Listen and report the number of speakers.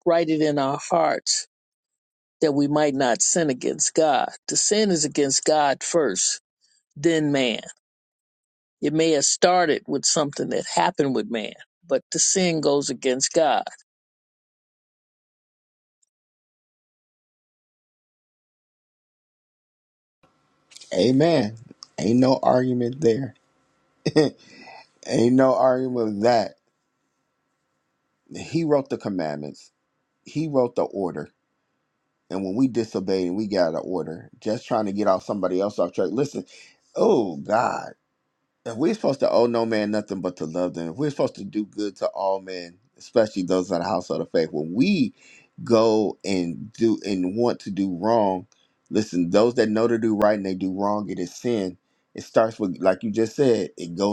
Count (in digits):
2